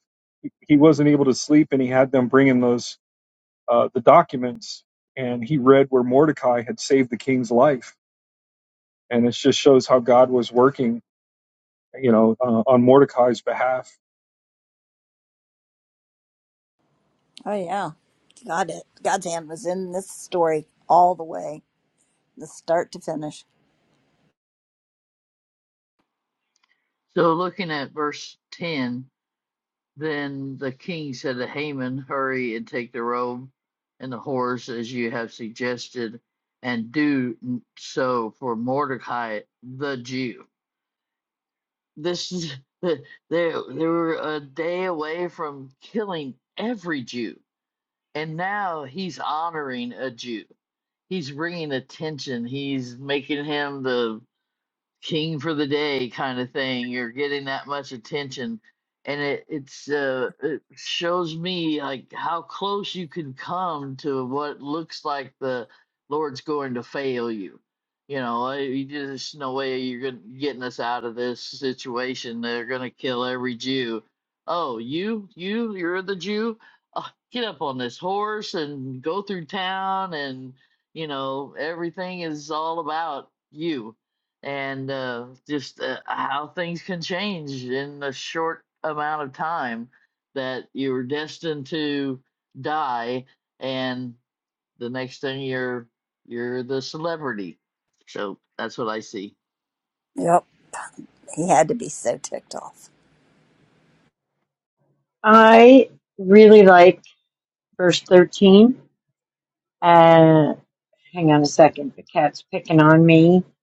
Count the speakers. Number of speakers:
4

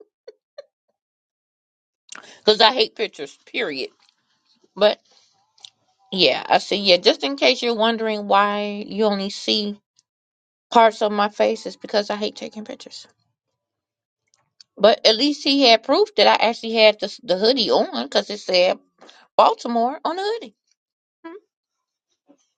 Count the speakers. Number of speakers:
1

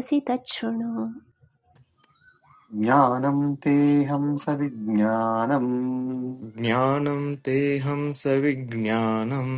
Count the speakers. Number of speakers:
3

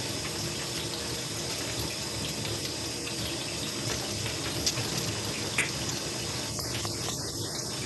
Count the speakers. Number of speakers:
0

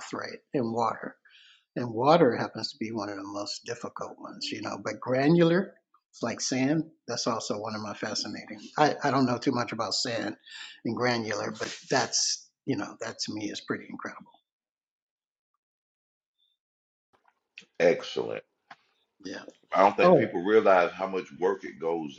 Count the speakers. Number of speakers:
2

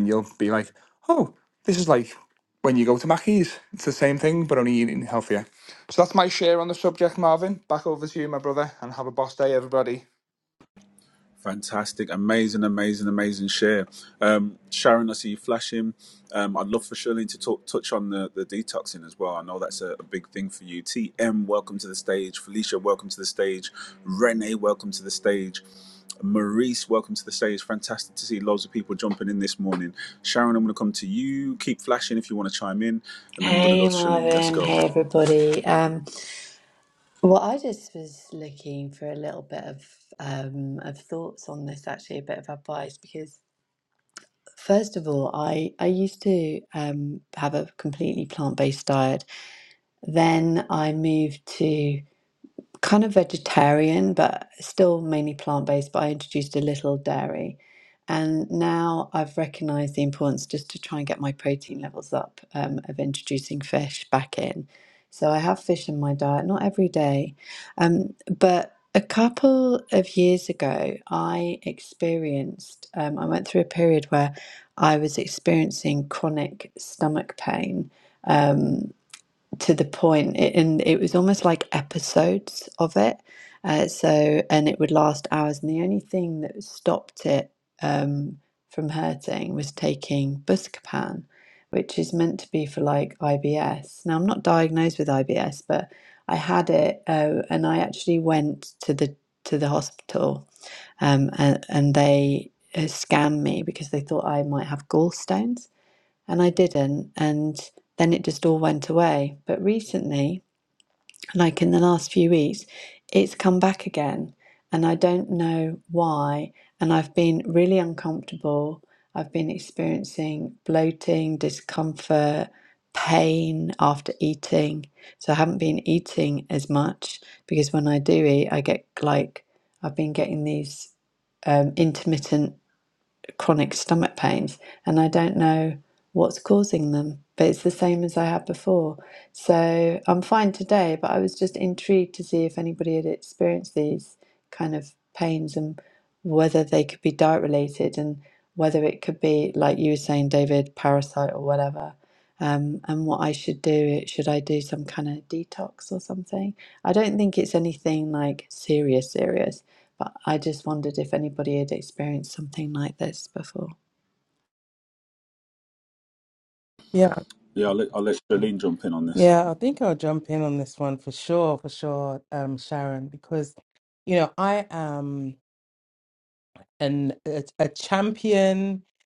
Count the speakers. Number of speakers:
4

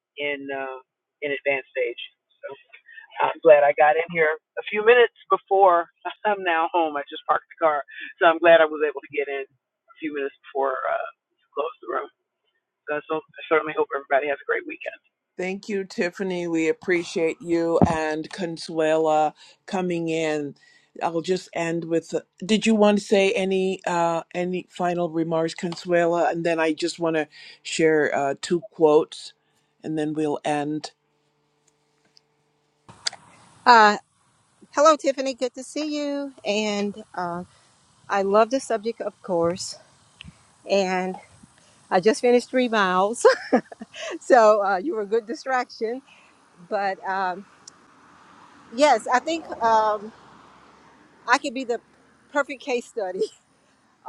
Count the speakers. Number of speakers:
3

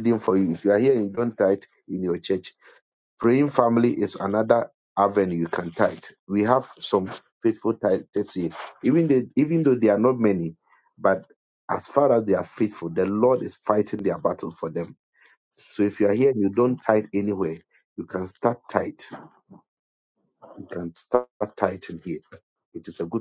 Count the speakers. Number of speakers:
1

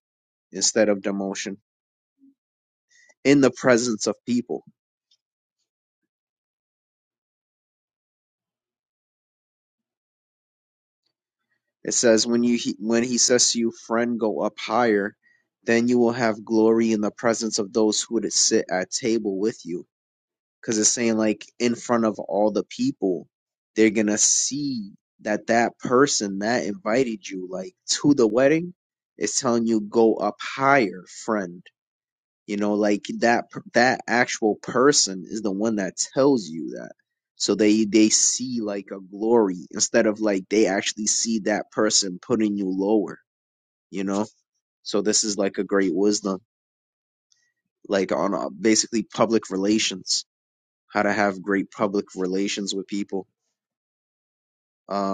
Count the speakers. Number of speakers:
1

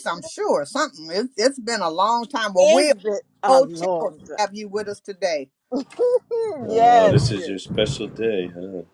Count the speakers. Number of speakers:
3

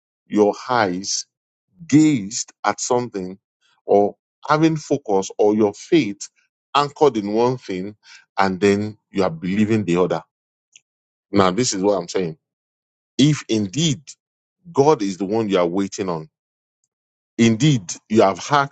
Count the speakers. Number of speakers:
1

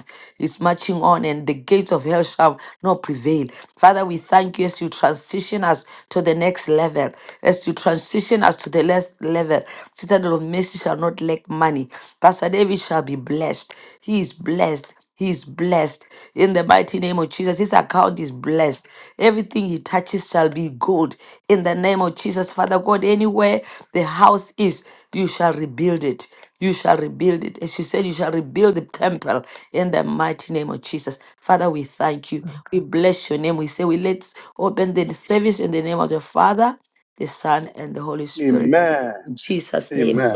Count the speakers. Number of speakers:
2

